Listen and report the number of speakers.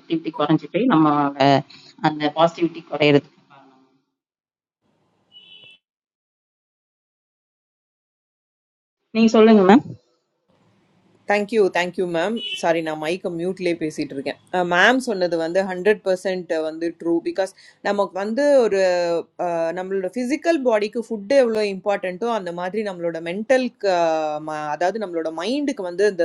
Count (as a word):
two